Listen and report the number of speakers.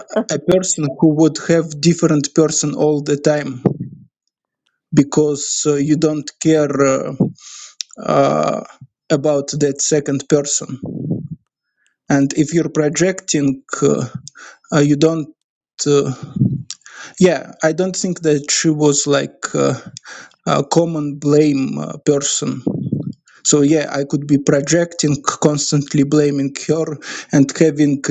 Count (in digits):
1